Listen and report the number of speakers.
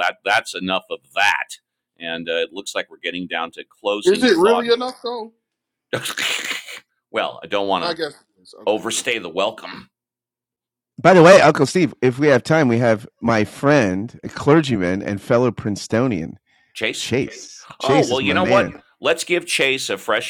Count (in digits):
3